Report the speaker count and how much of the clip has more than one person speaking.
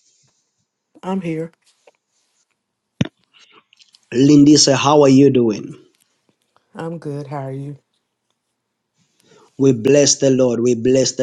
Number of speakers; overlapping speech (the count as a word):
two, no overlap